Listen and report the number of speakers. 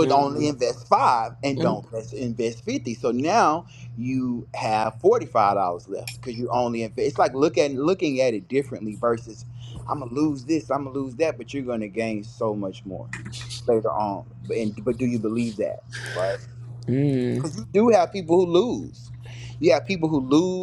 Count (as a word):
two